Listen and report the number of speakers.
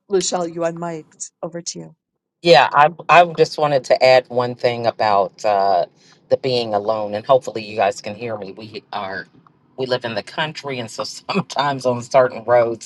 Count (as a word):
two